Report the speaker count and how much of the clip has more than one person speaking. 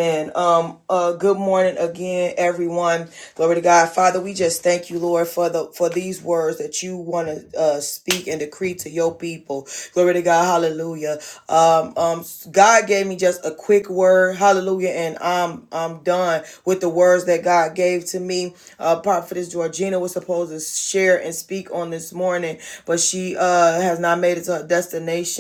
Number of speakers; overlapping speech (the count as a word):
one, no overlap